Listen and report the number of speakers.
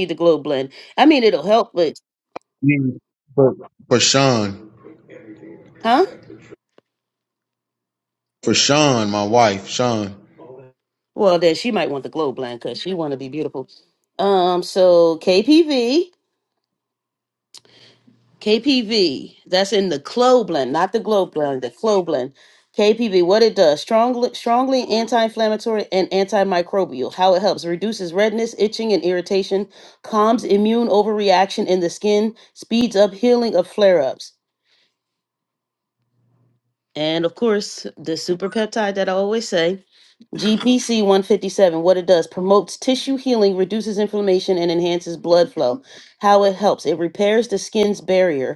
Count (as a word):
two